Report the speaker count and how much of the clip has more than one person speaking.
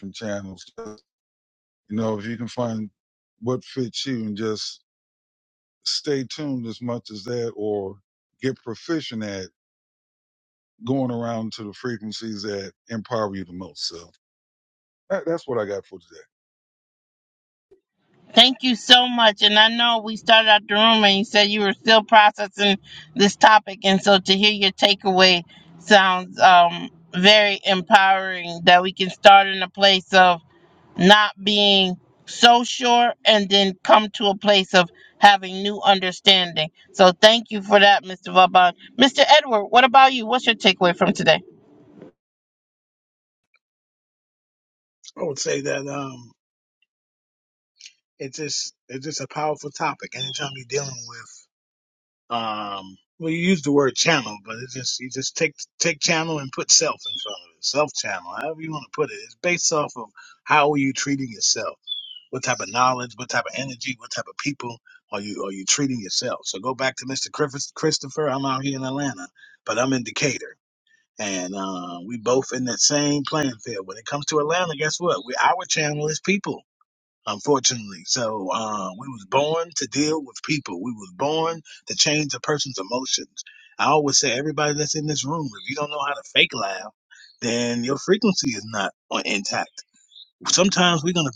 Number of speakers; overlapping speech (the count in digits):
3, no overlap